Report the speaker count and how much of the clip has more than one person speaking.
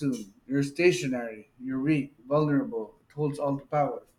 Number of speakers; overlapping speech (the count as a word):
one, no overlap